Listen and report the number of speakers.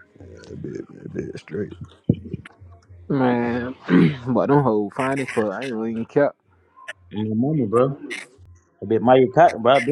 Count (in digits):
3